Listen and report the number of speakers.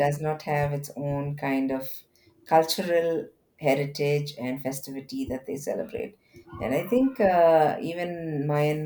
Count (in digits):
1